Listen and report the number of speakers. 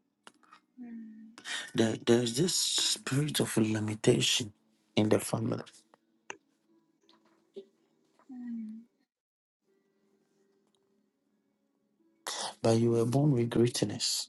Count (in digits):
2